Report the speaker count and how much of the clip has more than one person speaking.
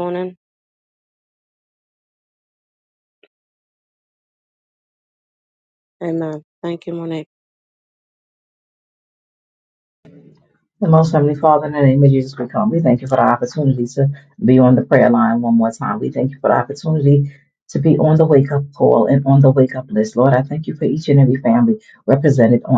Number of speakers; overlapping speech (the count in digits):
2, no overlap